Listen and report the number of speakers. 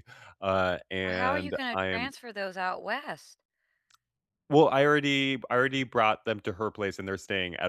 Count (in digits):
2